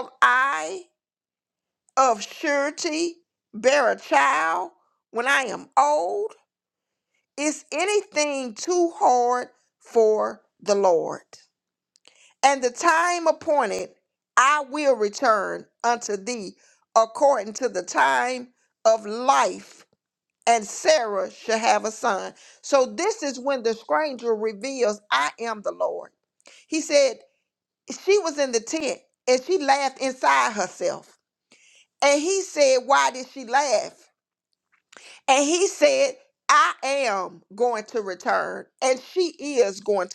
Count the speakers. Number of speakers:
1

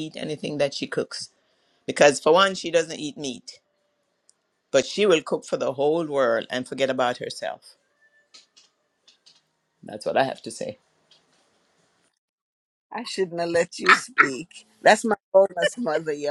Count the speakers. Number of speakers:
2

